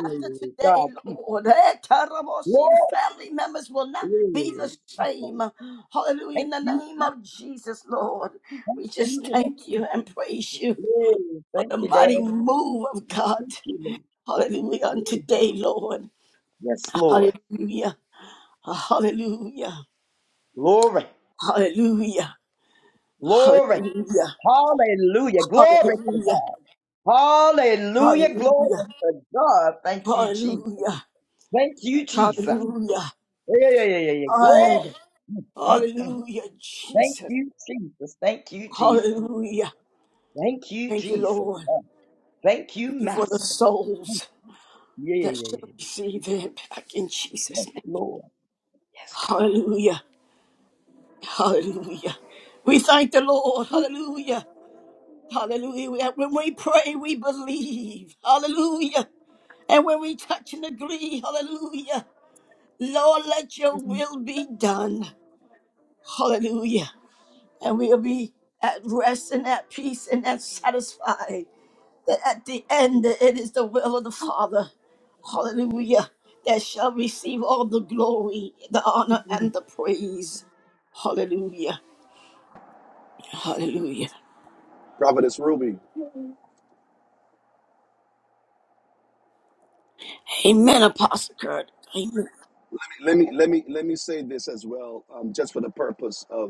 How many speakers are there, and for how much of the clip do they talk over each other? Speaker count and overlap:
three, about 11%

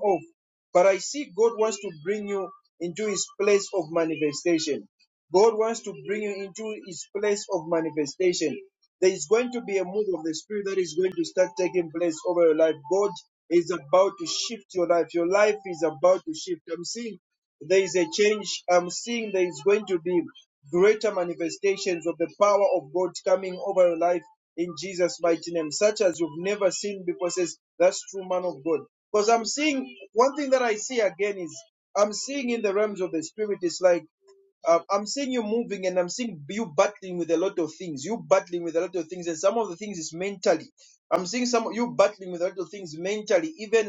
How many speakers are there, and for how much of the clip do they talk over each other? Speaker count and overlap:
one, no overlap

